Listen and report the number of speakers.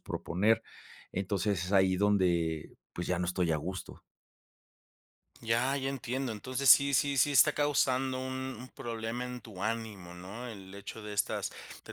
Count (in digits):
2